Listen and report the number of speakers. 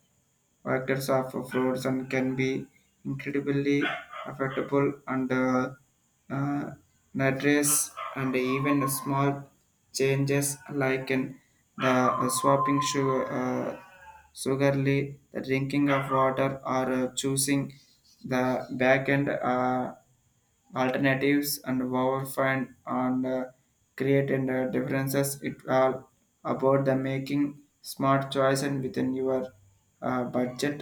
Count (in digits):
1